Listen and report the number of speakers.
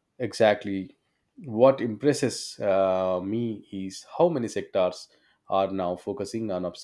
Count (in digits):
1